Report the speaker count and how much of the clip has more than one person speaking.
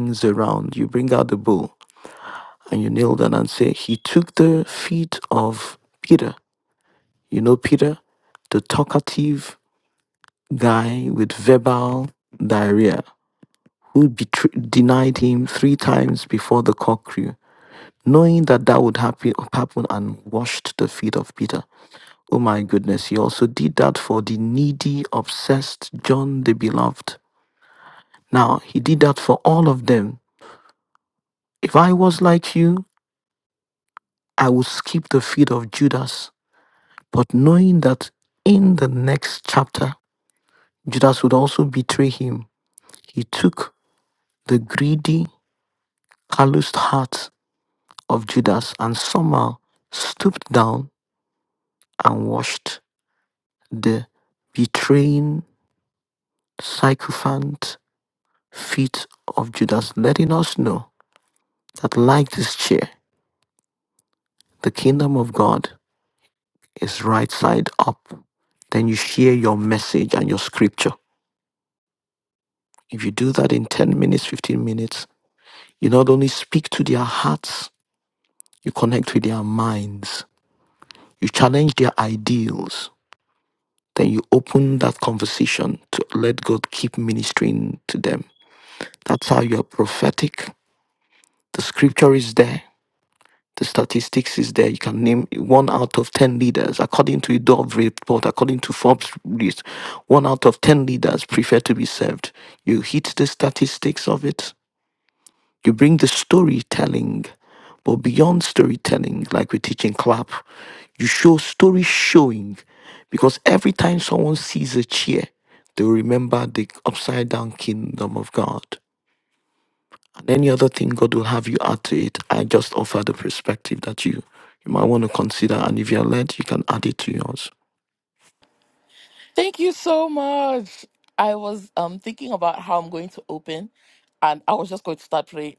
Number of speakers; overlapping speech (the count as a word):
two, no overlap